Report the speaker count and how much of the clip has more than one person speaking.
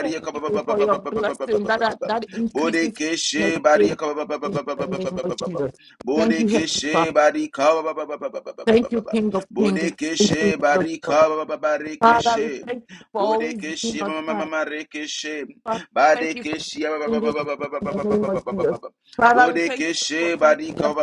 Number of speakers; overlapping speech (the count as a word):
two, about 60%